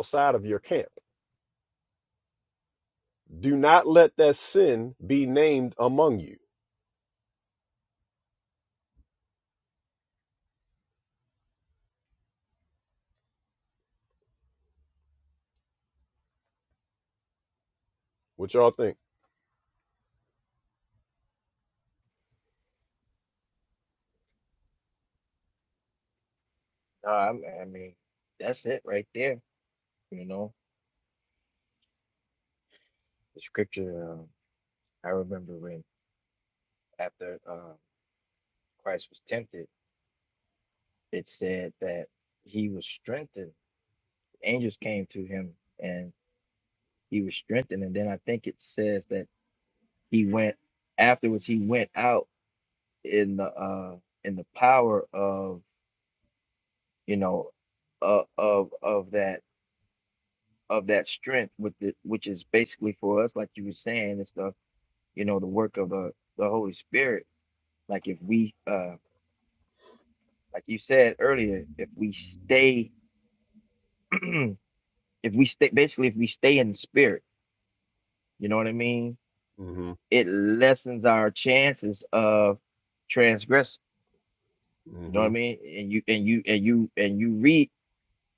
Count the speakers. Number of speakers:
2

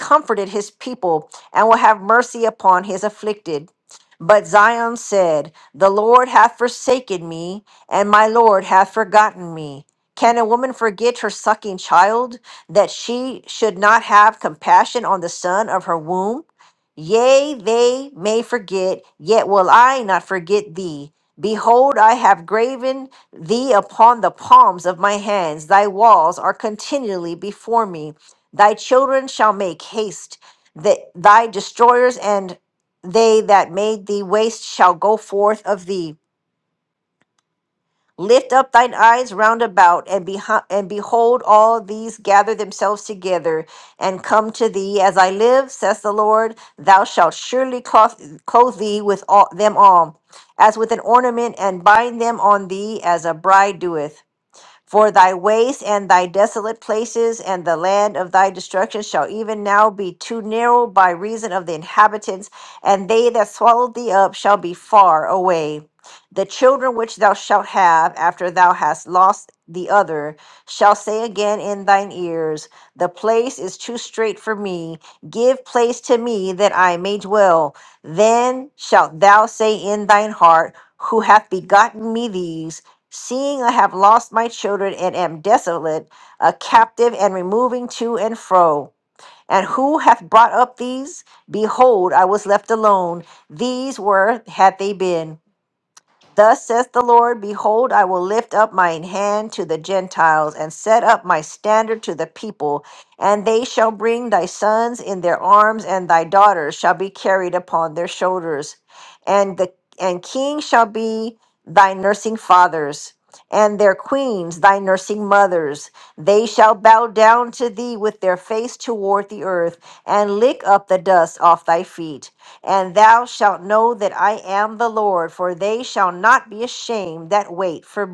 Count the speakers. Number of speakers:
1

